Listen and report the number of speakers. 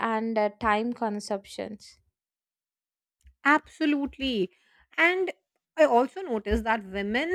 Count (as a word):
two